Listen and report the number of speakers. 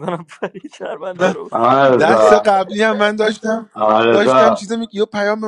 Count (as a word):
three